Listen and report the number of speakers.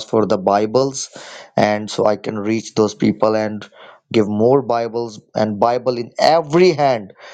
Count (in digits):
1